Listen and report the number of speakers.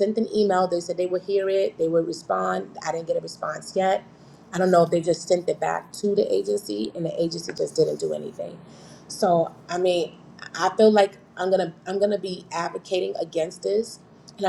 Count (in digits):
1